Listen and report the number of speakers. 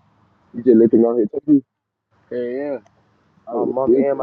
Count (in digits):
2